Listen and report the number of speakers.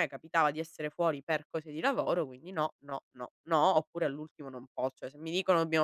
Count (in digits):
1